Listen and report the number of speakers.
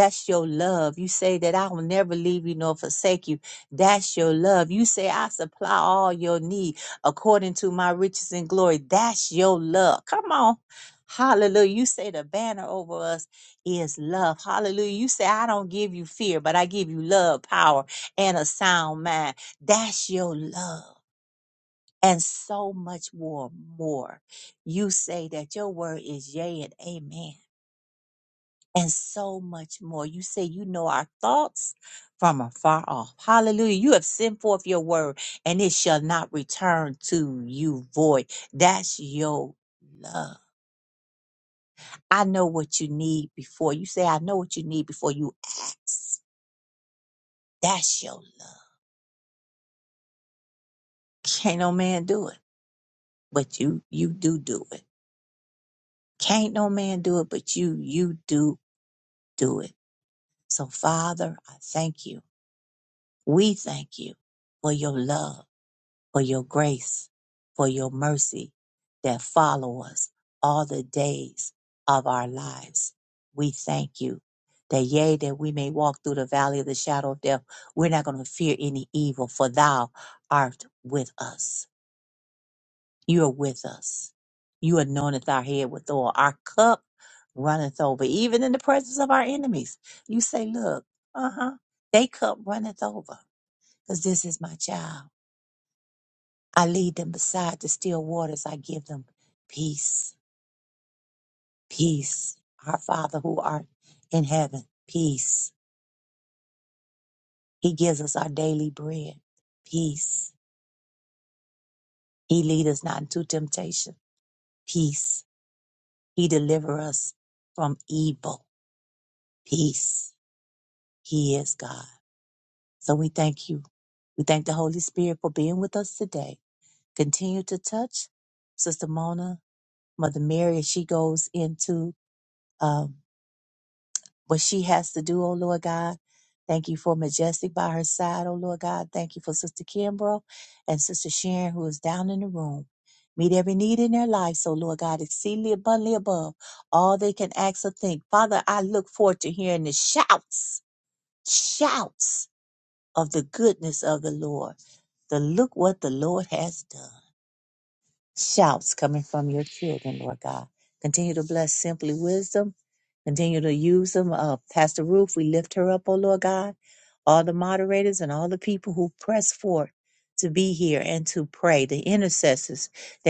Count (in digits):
1